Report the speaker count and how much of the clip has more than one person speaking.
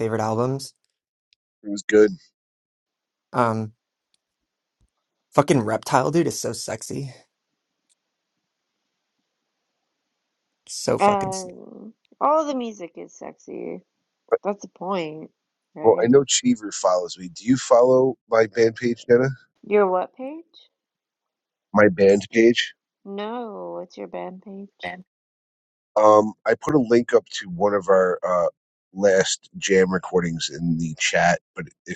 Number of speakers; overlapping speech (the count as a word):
three, about 2%